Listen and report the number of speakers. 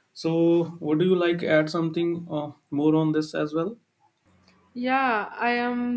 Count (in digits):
2